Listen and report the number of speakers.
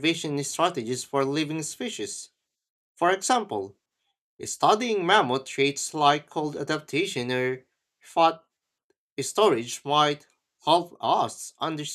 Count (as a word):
one